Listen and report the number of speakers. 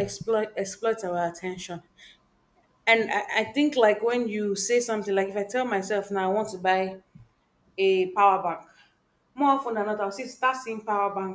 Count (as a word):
one